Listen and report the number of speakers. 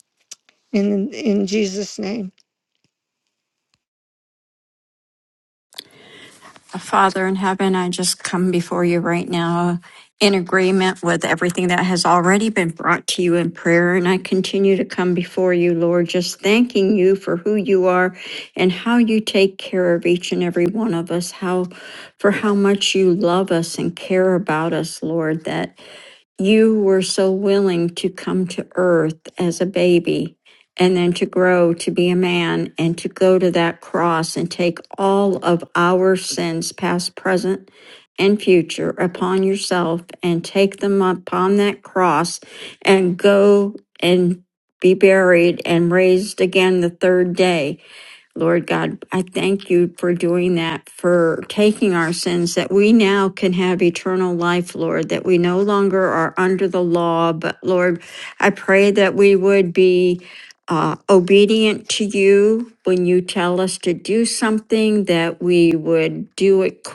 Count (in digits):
2